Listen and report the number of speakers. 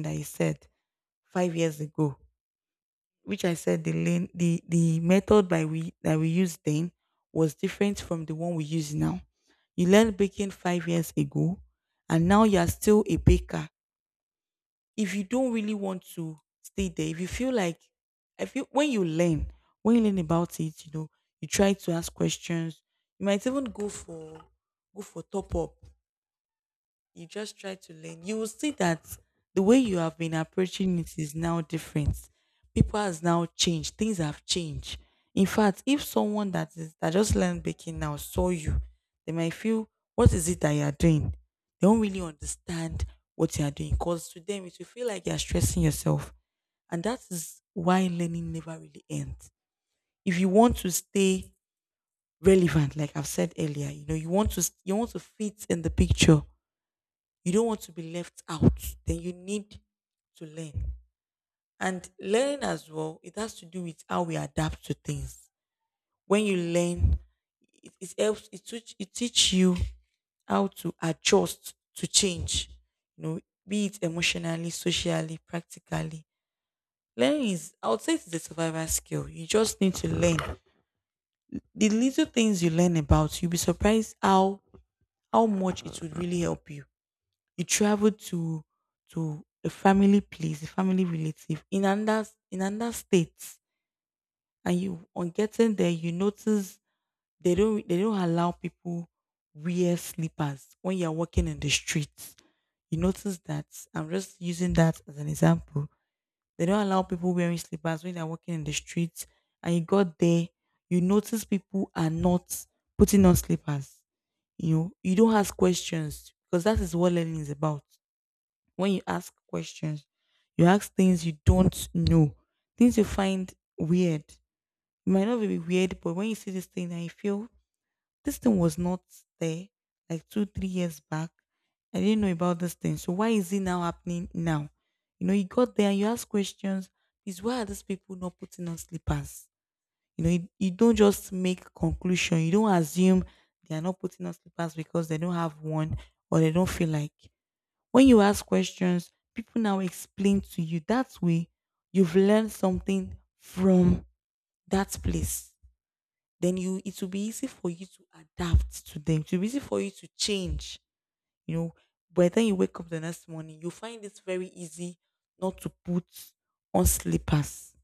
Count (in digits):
1